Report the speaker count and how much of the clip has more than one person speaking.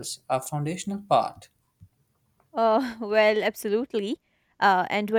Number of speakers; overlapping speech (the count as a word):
two, no overlap